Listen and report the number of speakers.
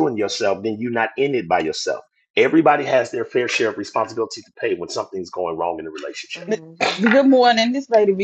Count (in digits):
2